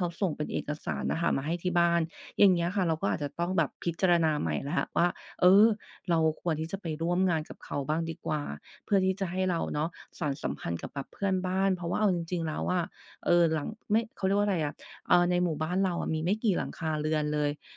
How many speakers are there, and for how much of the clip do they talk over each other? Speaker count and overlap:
one, no overlap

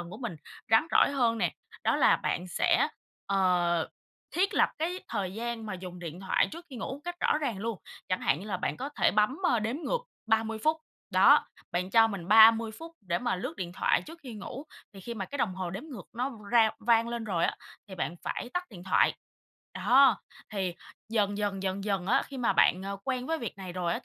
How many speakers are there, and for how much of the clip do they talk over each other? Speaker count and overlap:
one, no overlap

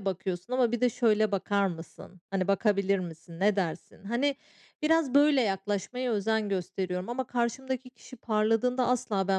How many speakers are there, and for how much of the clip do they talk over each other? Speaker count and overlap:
one, no overlap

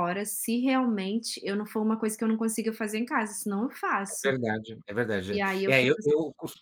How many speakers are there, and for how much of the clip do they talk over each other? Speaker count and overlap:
two, about 15%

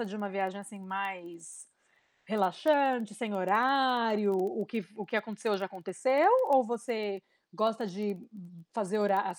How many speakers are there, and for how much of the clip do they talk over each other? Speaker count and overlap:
one, no overlap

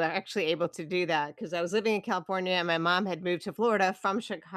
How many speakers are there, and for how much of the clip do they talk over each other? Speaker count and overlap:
one, no overlap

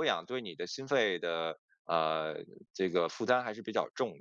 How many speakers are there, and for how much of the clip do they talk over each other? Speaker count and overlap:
one, no overlap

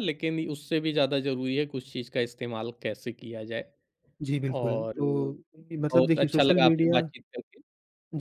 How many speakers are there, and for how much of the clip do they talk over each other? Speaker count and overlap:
two, about 22%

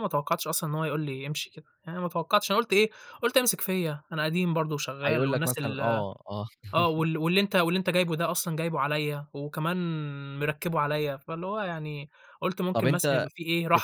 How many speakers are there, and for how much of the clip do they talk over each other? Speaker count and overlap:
two, about 11%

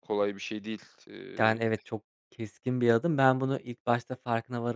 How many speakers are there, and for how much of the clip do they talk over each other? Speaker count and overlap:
two, about 5%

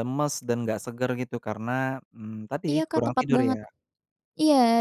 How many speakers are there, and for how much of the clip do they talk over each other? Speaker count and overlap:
two, about 18%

